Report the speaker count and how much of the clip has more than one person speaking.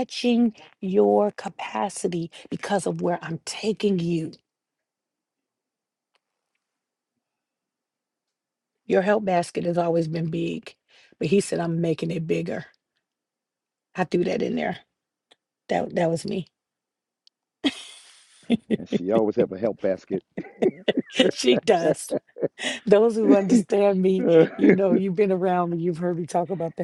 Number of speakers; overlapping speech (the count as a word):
two, under 1%